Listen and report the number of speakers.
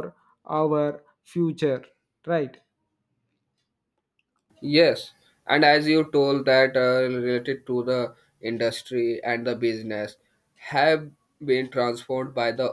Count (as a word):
two